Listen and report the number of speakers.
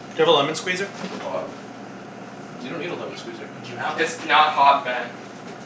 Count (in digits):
3